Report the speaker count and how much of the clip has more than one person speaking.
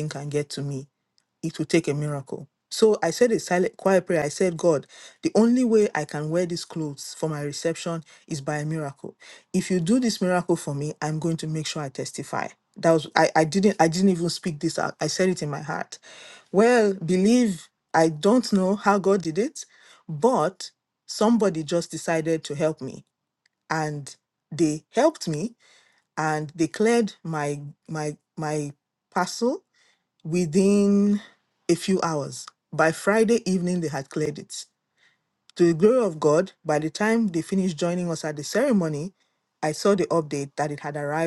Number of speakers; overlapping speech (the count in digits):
1, no overlap